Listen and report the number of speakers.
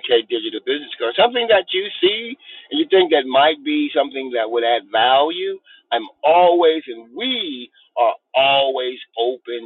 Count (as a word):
one